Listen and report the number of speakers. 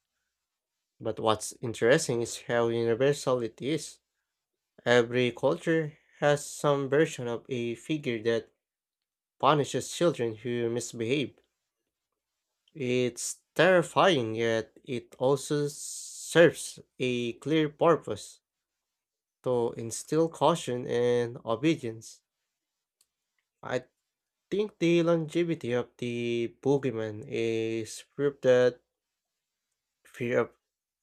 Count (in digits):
1